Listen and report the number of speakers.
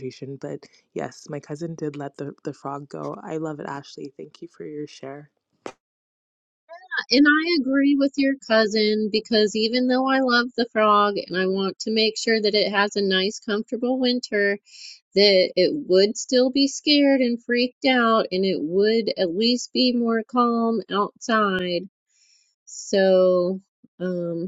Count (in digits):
2